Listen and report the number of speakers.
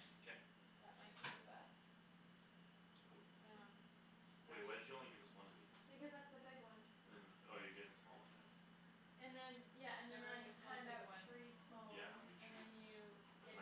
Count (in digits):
3